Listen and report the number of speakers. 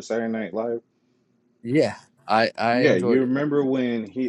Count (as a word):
two